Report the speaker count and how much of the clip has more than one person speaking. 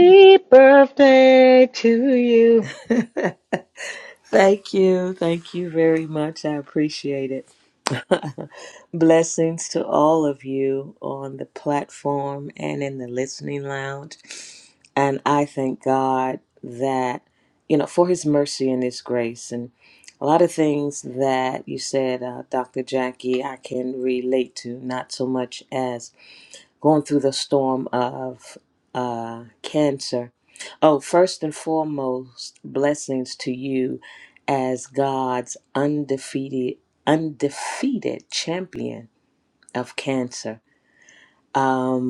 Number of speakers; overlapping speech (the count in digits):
2, no overlap